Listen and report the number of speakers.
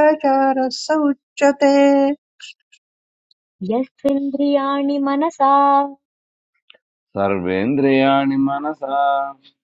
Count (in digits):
3